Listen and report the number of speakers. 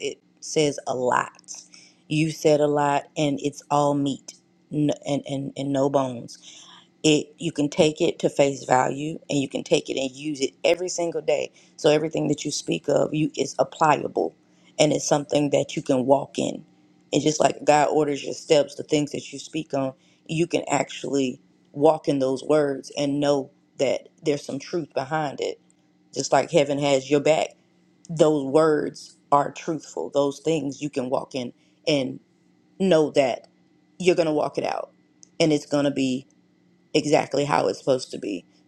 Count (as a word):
one